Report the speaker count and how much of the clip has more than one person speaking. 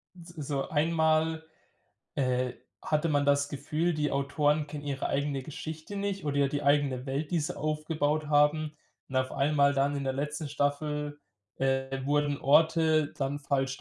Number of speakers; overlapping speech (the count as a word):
one, no overlap